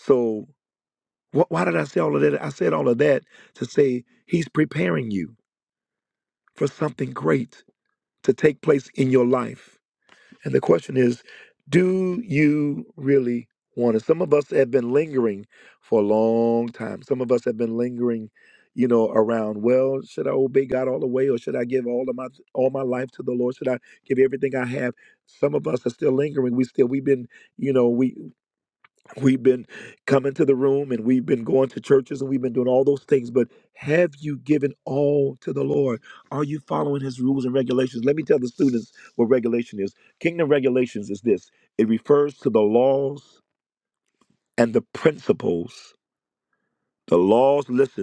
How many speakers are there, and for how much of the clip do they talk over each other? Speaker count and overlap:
1, no overlap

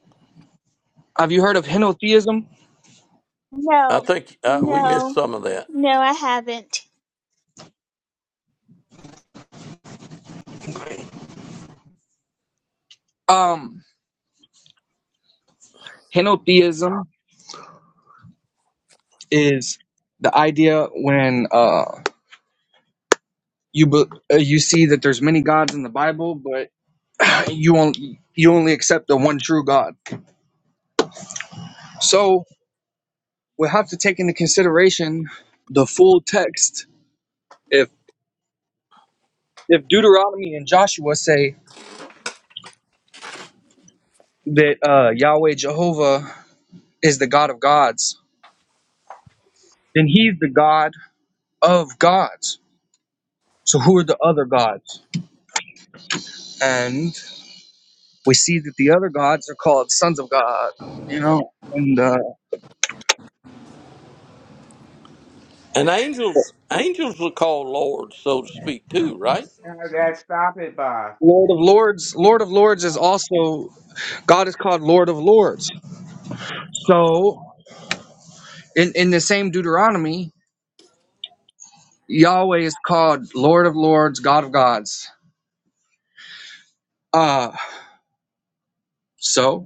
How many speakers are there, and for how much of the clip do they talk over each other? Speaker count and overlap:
4, about 1%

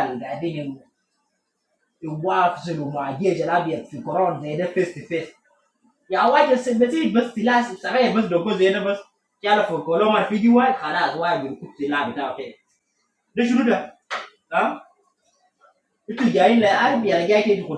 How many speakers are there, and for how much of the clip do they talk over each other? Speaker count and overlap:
1, no overlap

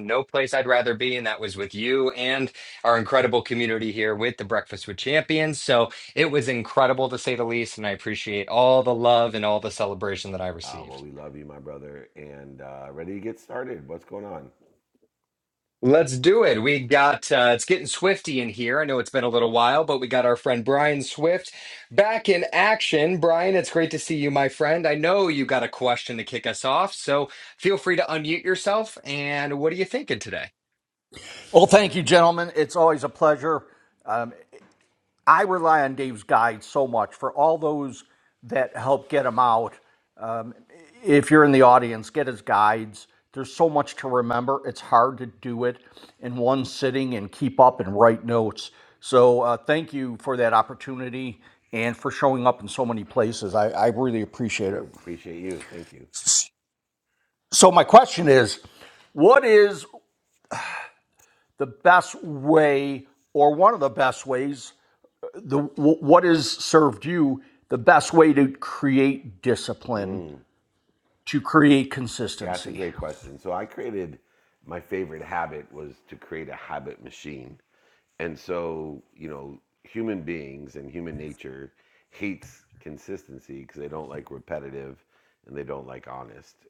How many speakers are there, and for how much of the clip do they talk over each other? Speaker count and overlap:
3, about 1%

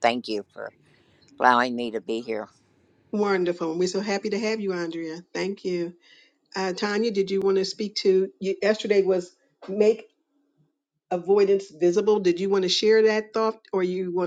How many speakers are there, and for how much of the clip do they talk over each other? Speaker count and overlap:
2, no overlap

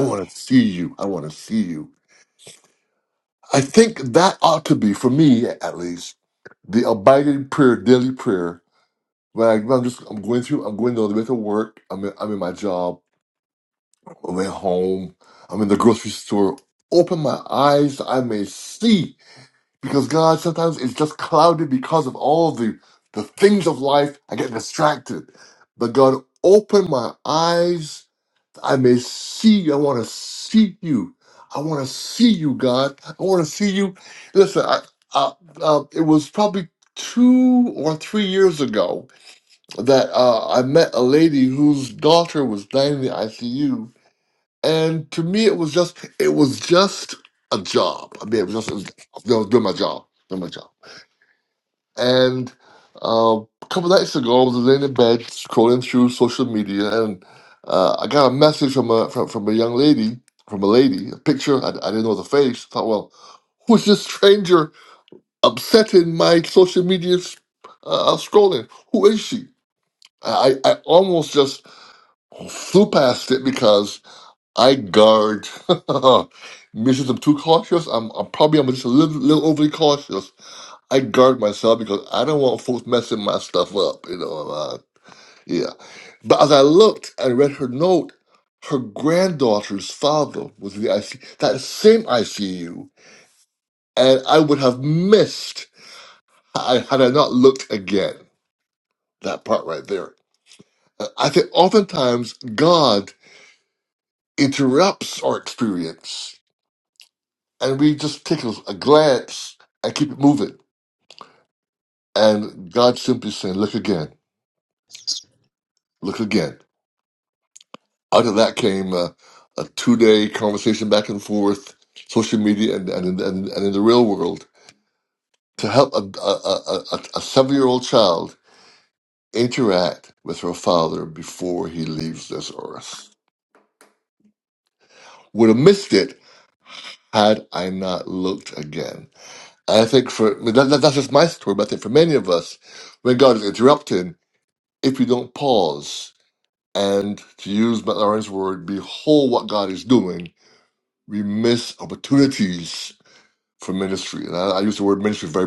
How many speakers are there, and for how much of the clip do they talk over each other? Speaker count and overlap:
1, no overlap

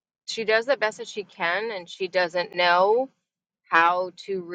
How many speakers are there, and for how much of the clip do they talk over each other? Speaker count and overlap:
1, no overlap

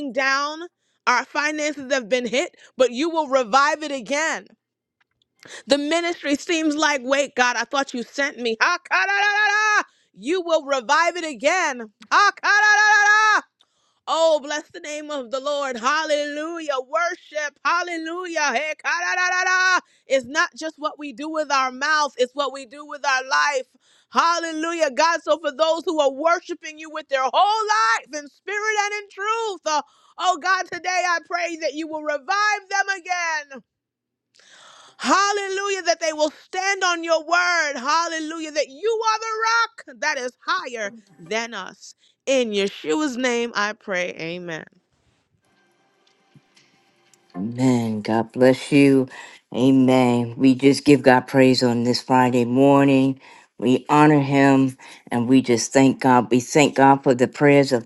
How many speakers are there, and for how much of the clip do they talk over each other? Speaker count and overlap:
2, no overlap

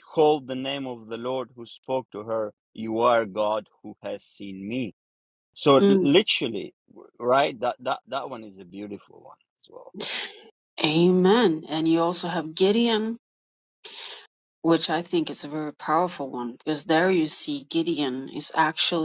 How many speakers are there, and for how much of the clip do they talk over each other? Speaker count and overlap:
2, about 2%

